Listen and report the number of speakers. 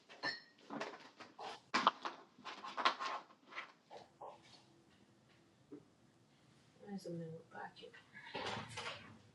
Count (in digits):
0